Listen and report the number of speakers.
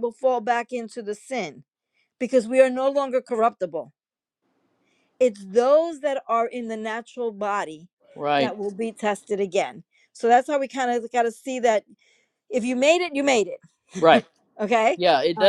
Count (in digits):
2